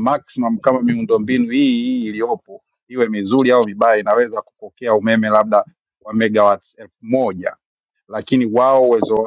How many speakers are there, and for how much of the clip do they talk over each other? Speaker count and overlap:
one, no overlap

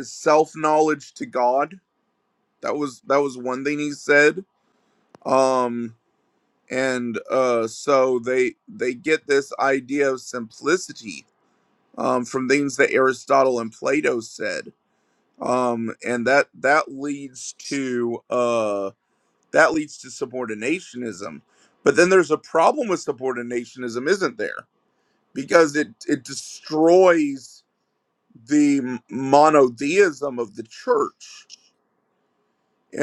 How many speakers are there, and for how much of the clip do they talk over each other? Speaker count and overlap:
one, no overlap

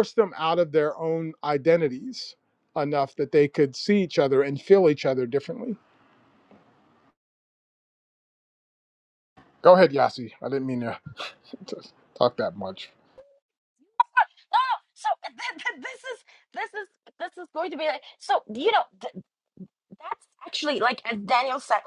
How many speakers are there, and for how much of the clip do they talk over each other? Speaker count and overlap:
two, no overlap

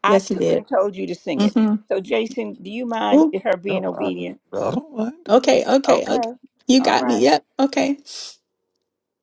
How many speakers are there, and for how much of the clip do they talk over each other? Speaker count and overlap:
three, about 29%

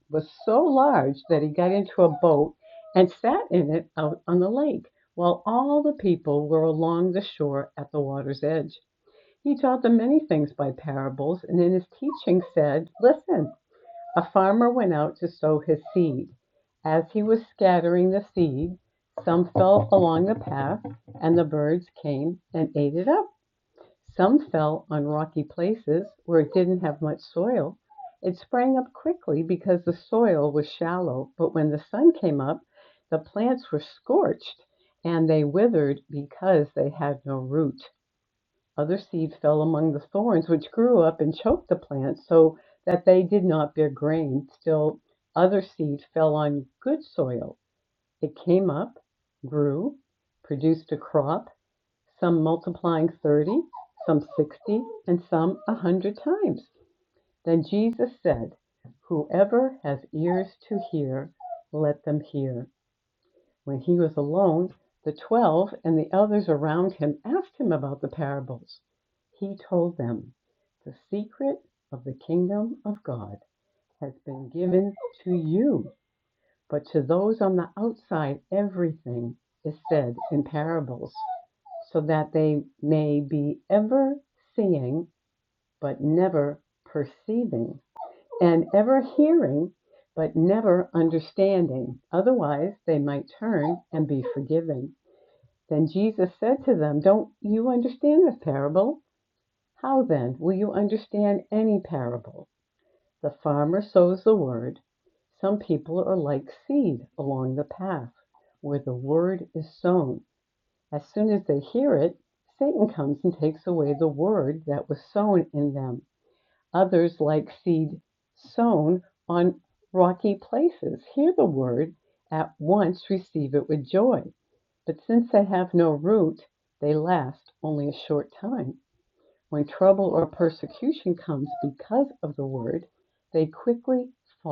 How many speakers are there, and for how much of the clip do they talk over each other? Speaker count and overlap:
one, no overlap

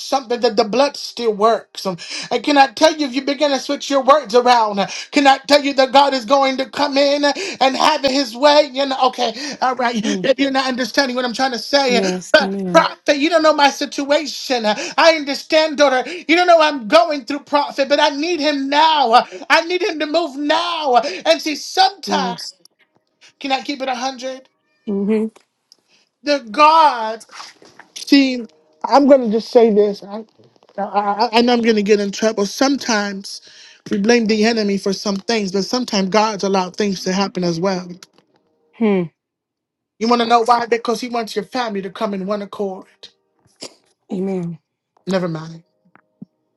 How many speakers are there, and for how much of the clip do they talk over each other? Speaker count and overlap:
two, about 3%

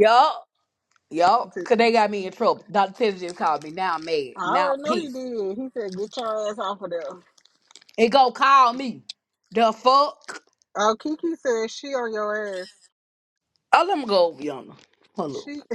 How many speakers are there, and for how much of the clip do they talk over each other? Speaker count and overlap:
two, about 5%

